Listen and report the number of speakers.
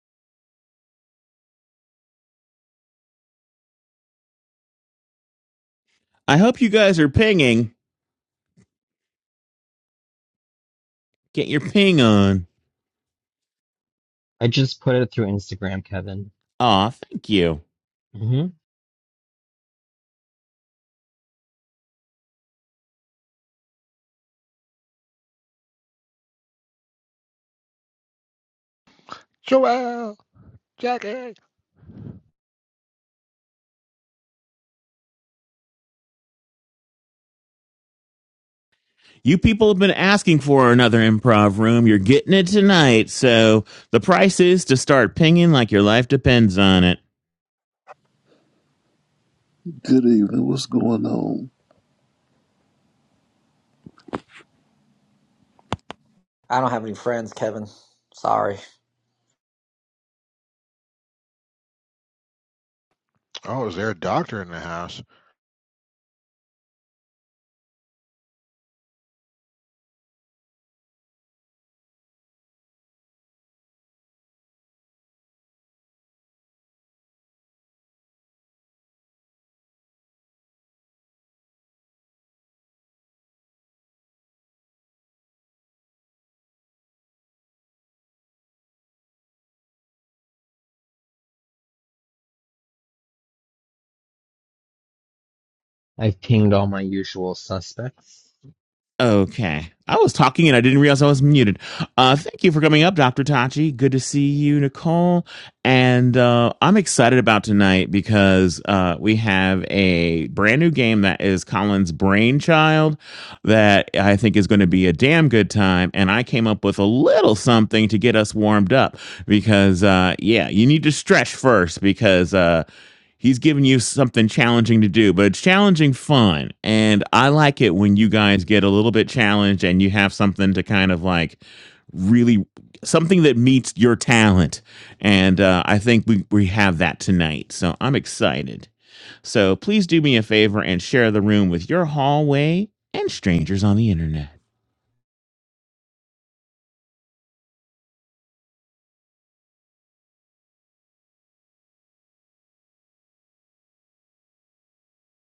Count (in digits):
5